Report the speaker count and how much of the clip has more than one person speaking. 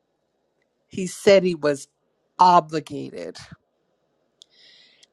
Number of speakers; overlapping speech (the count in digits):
1, no overlap